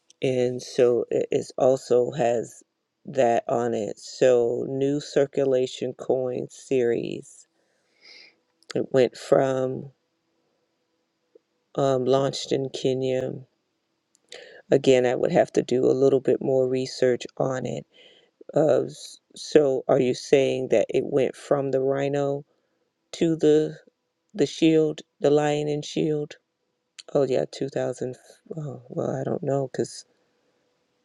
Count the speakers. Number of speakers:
1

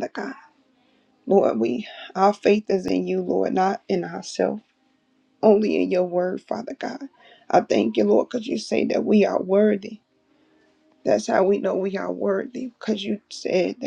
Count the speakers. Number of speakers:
1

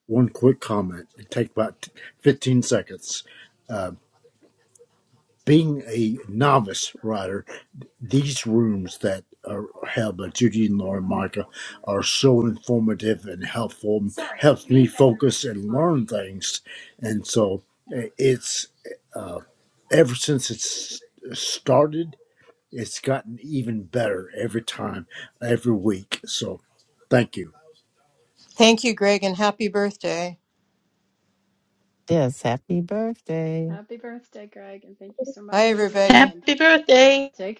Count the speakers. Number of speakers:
5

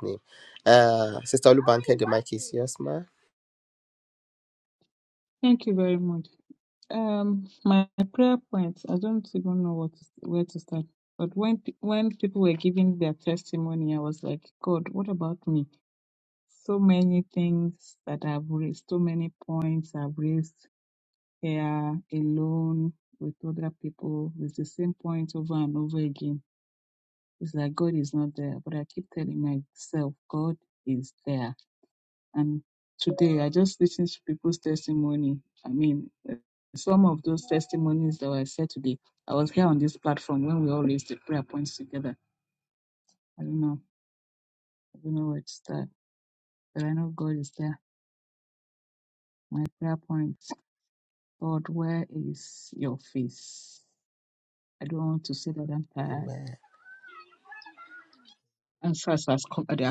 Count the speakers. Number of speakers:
2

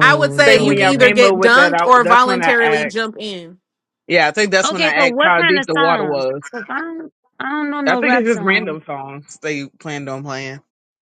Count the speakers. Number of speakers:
3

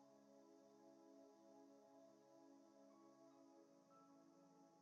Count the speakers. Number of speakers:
0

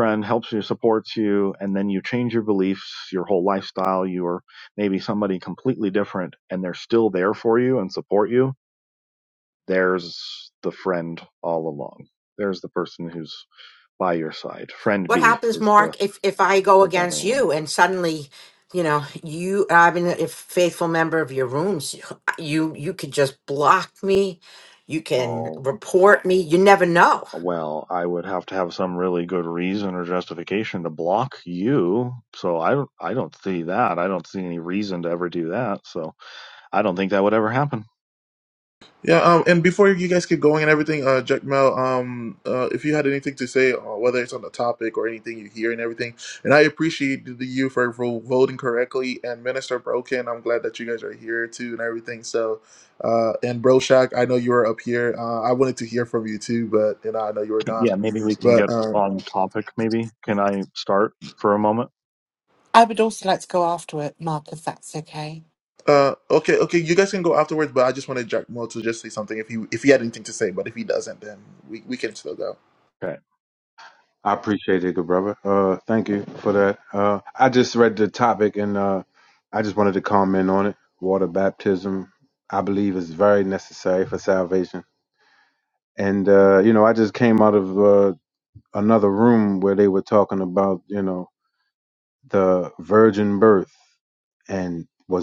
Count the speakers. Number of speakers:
5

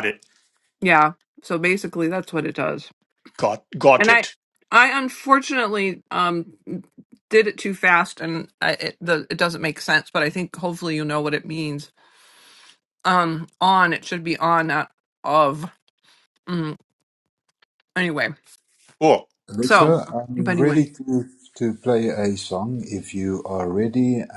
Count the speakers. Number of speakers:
3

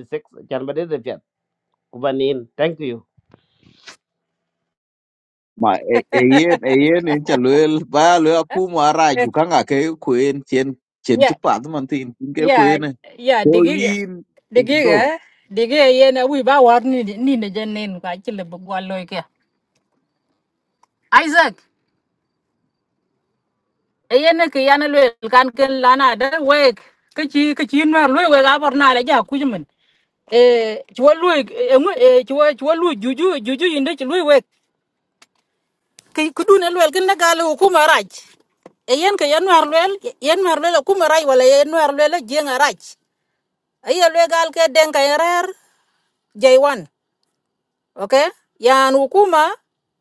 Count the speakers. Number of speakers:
3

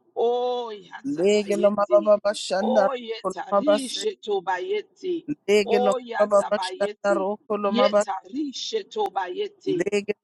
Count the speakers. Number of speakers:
2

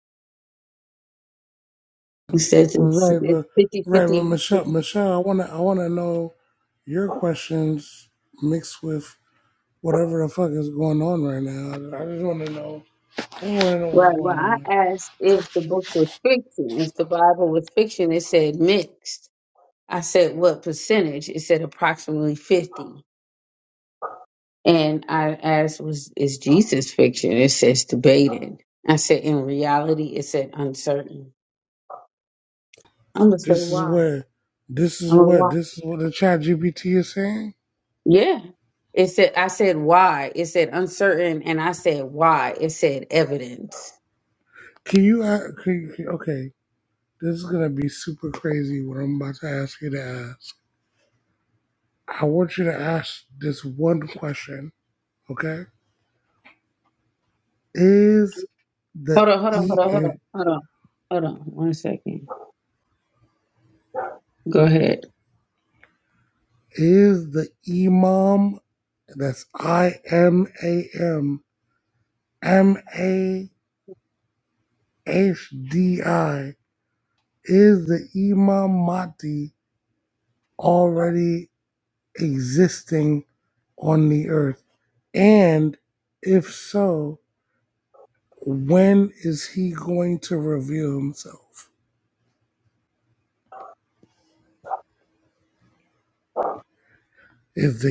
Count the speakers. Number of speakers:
2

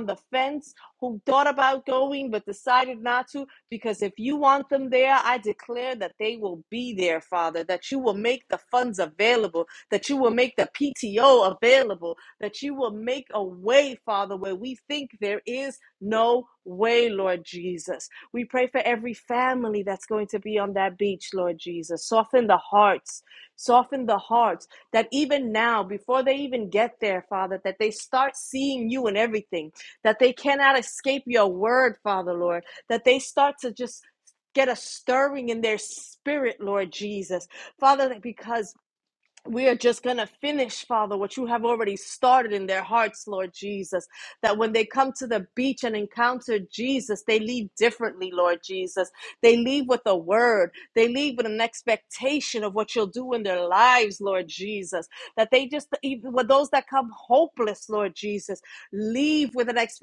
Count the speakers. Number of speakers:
1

